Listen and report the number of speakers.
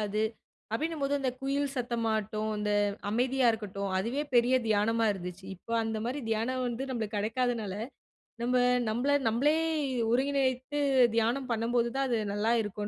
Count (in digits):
1